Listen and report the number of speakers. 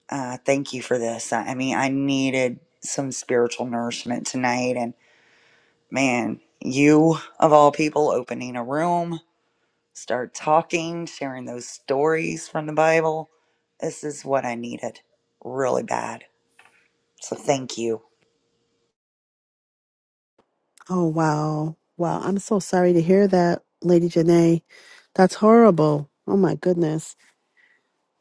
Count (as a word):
two